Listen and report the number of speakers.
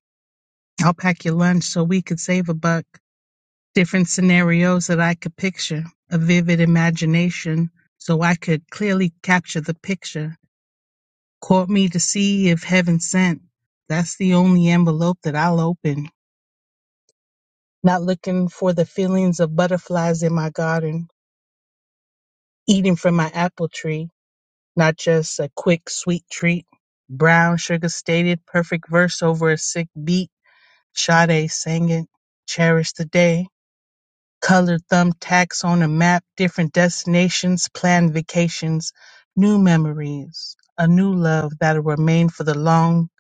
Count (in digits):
1